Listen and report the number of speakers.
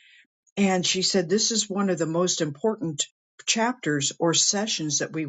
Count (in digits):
1